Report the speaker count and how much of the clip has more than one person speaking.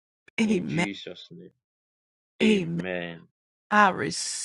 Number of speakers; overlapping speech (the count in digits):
2, about 18%